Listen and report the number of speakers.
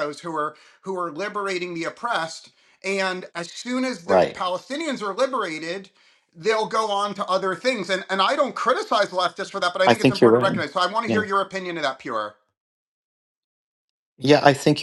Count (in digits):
2